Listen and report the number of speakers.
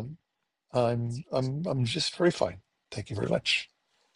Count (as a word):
one